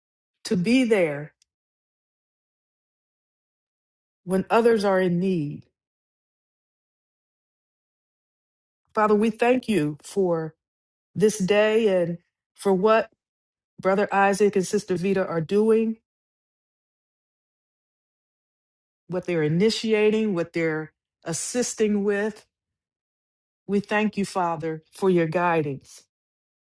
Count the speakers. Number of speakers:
one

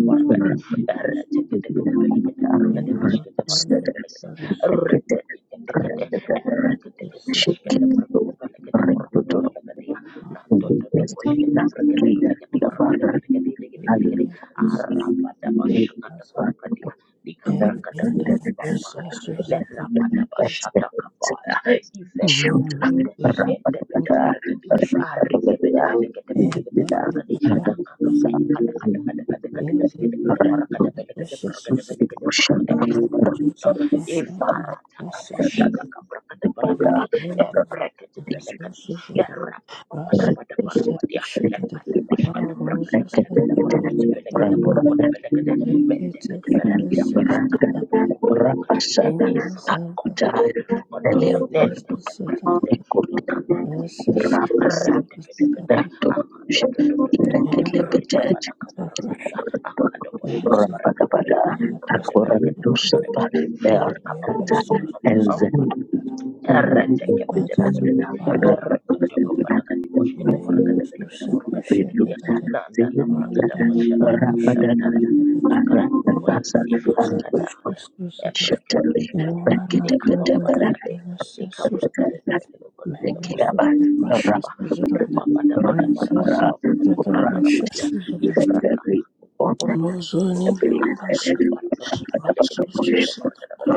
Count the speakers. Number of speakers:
three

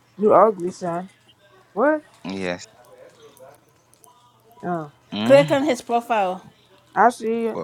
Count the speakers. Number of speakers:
three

